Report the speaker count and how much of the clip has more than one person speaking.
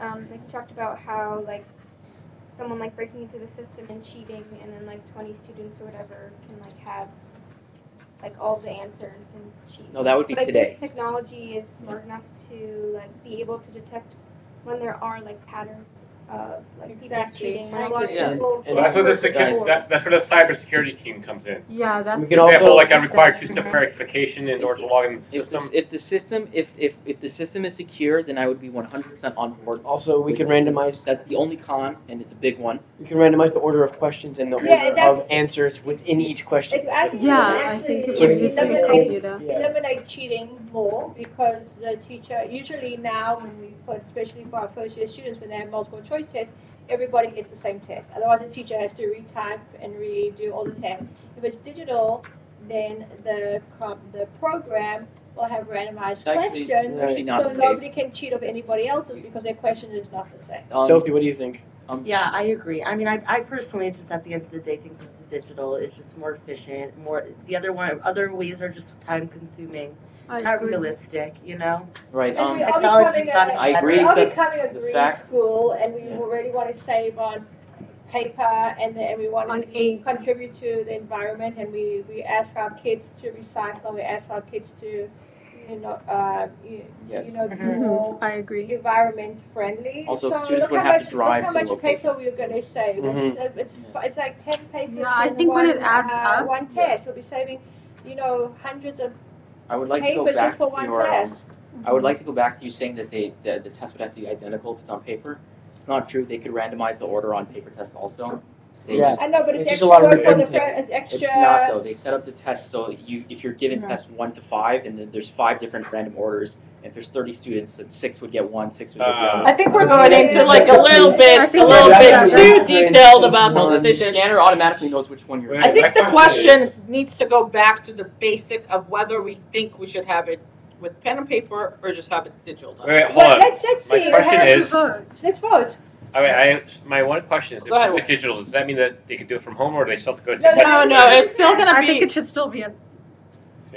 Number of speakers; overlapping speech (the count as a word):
eight, about 26%